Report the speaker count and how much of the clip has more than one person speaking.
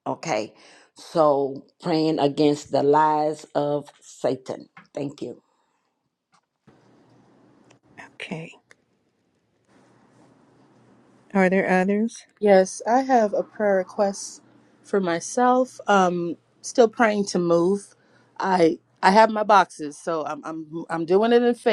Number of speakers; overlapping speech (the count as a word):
three, no overlap